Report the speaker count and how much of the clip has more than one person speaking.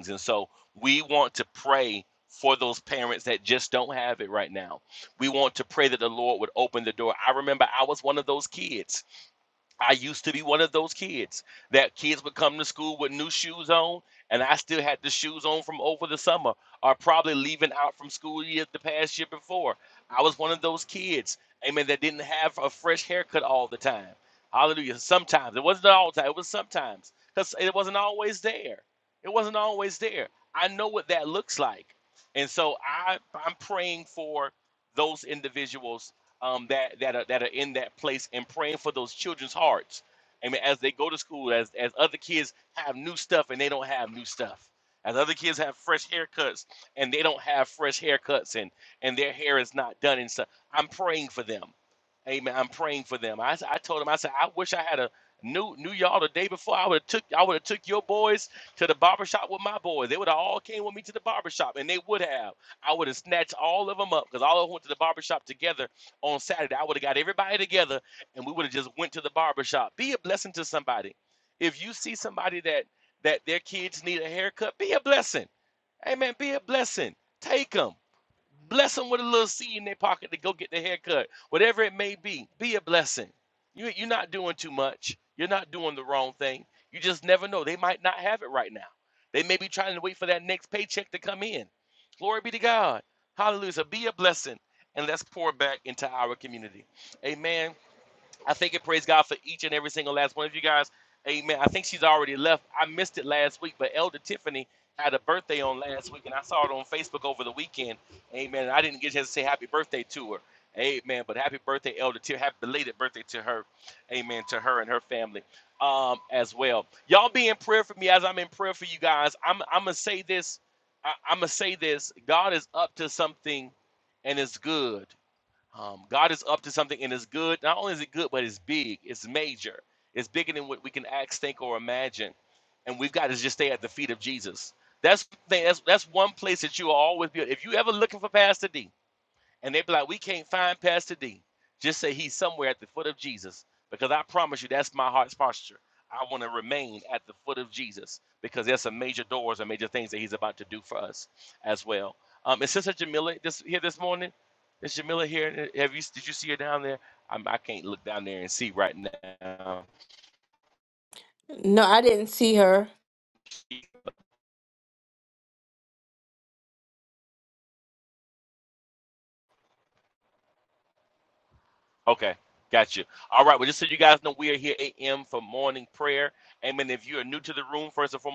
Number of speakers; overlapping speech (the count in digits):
2, no overlap